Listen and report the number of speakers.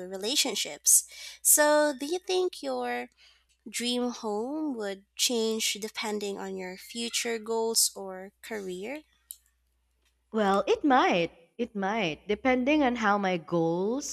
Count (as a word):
two